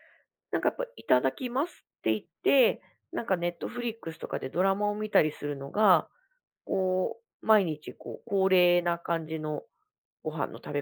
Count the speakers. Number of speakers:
1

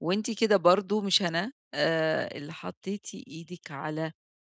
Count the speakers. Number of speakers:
1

